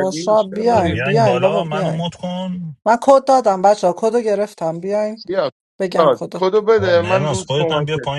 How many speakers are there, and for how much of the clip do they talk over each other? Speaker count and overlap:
three, about 44%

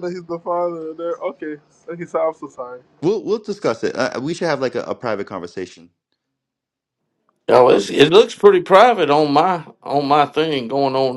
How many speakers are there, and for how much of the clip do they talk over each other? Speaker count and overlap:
three, about 5%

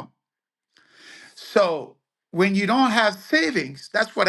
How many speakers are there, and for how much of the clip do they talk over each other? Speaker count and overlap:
one, no overlap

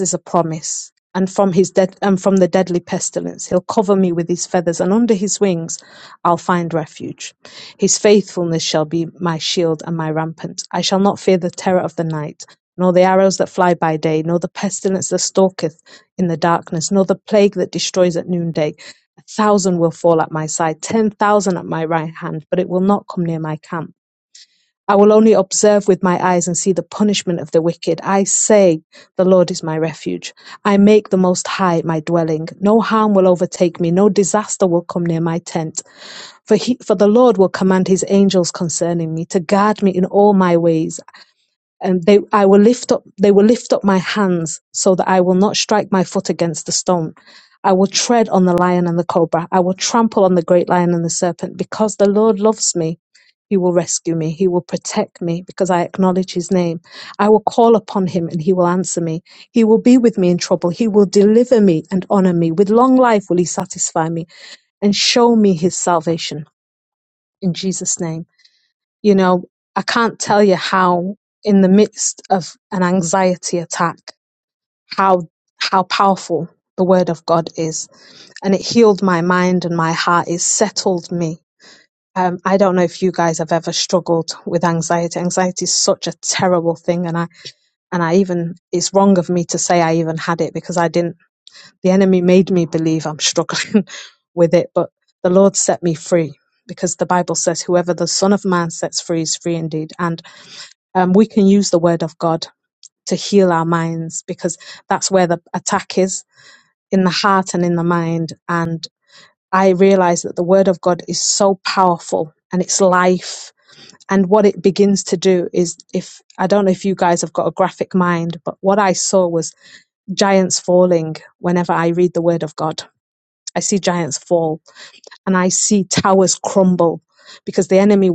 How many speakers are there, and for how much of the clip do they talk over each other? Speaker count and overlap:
one, no overlap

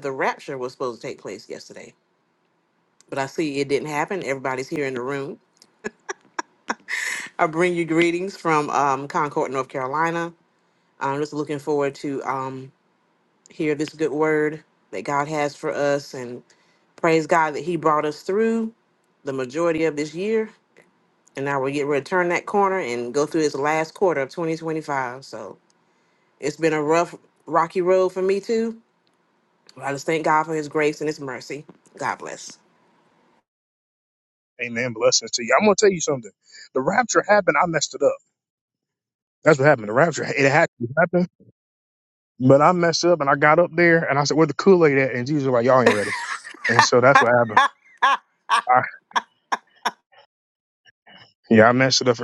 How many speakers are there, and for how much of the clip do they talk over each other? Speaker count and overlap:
two, no overlap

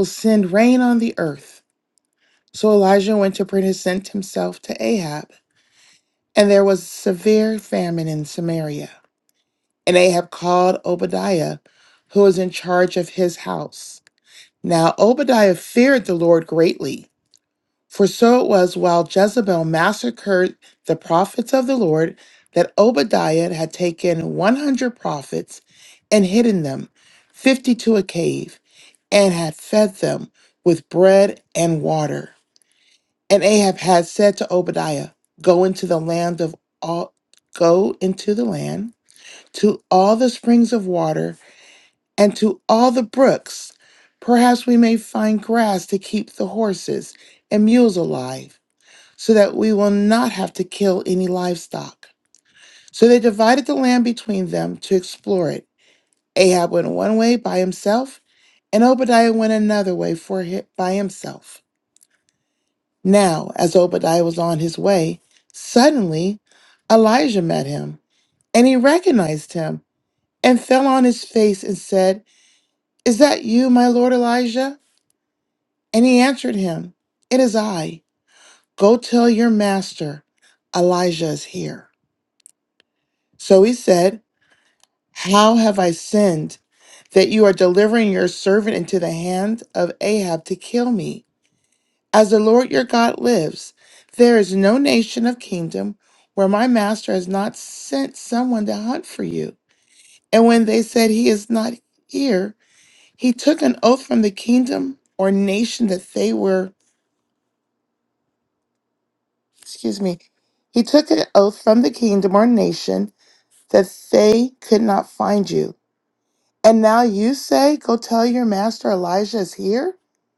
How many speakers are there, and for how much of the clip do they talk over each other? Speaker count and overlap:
one, no overlap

